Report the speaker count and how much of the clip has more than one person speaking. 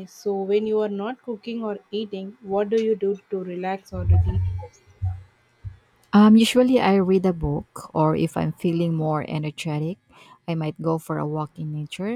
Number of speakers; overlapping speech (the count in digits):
2, no overlap